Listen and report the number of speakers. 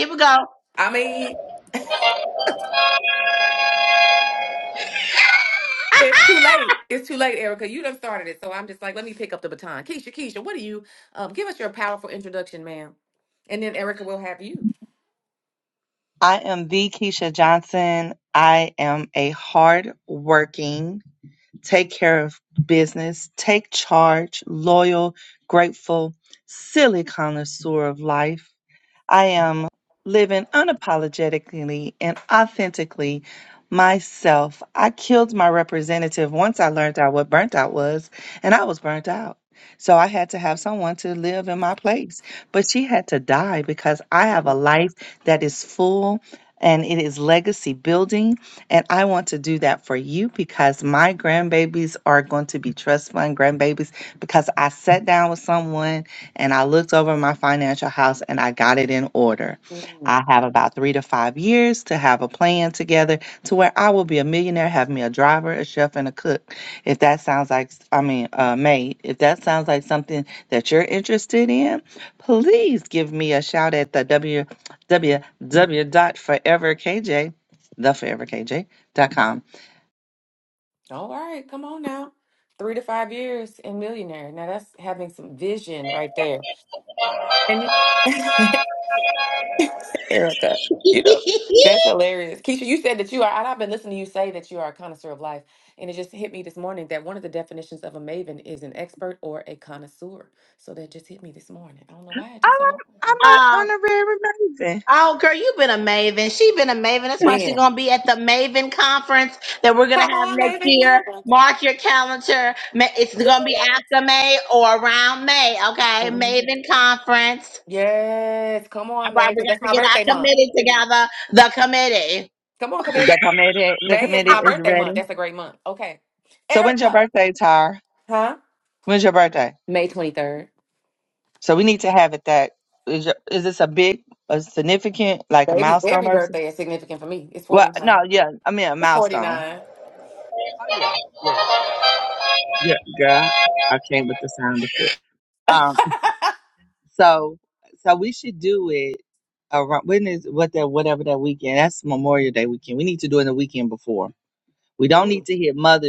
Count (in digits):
3